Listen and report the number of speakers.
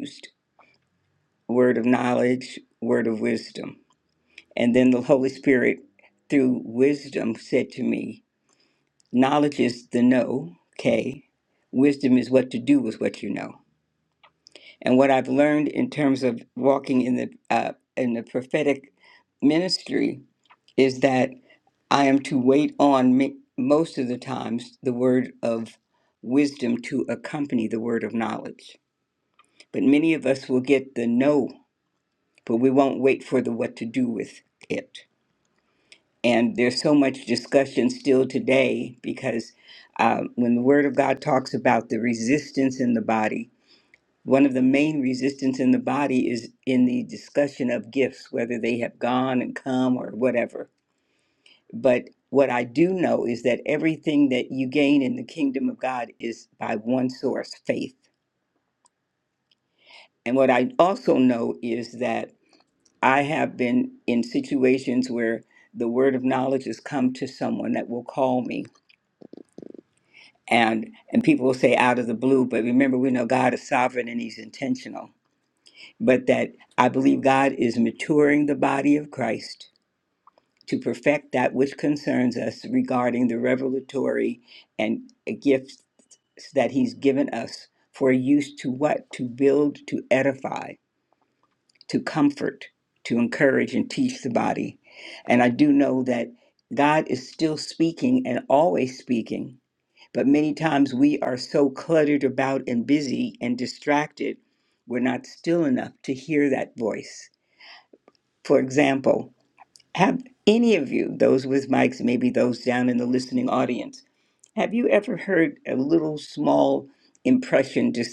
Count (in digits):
1